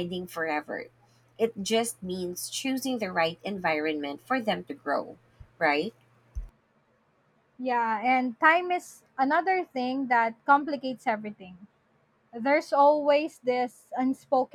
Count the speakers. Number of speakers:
2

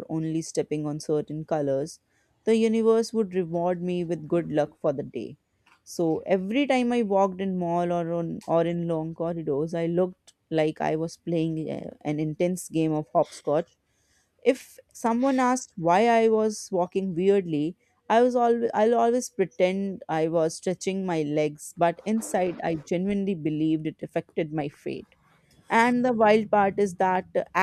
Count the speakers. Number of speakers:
1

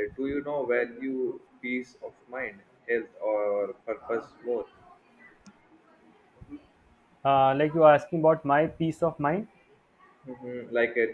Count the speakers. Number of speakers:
2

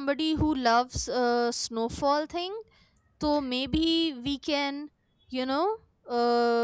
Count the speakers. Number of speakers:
1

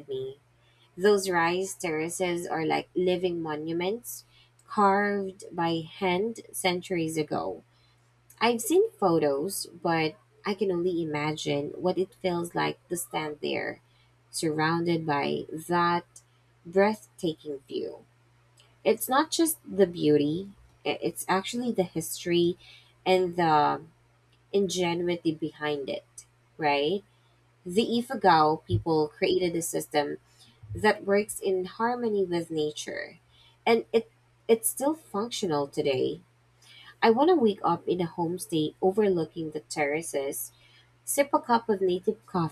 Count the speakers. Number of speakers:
1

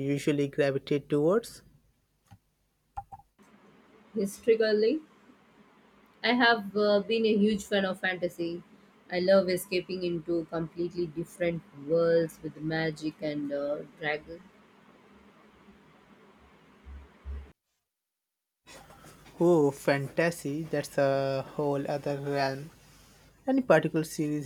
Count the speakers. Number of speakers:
2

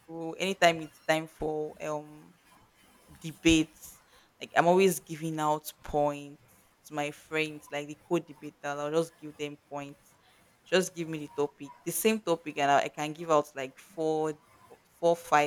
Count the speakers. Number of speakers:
1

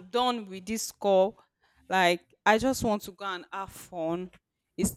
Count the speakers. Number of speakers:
1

